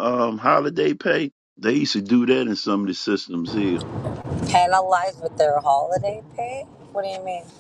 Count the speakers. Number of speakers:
two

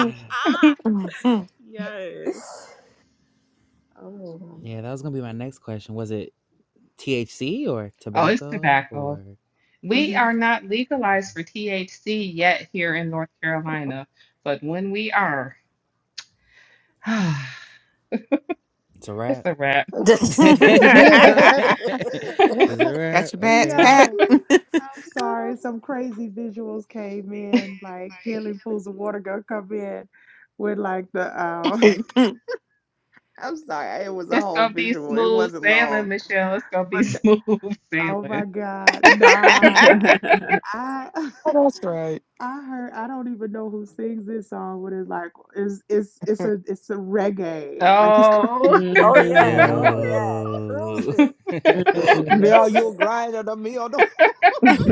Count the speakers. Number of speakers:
six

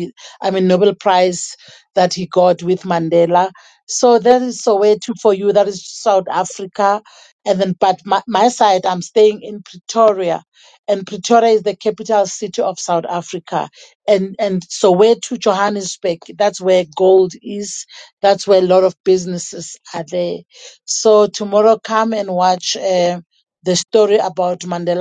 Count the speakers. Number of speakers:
one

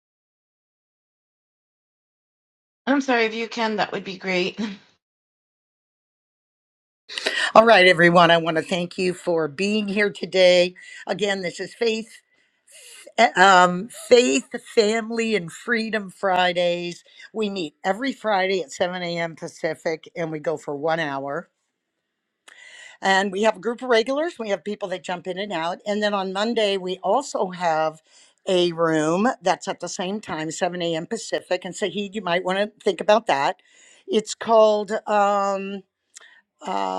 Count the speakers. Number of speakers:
two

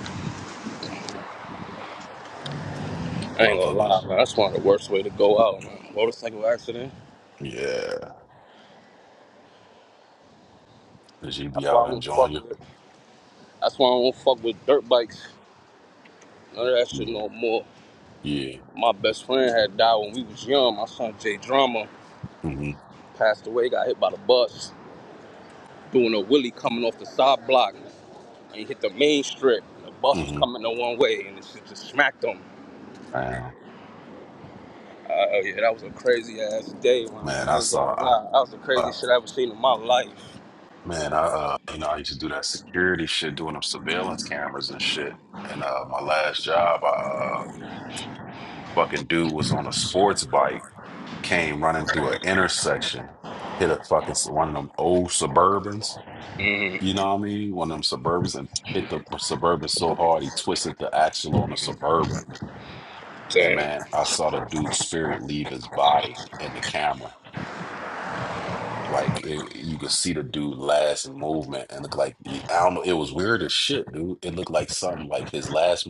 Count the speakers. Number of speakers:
two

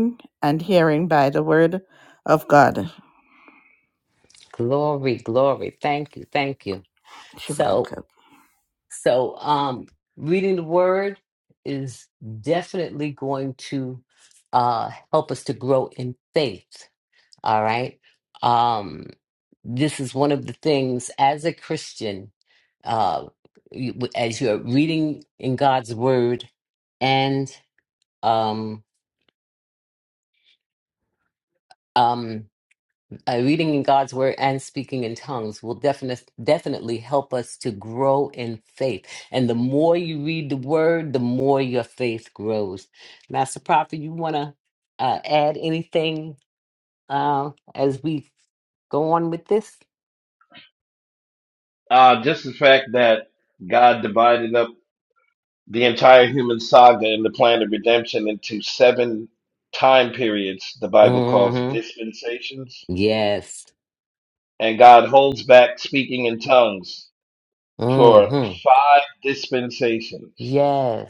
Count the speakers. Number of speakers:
three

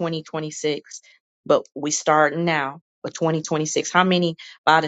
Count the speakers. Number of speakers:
one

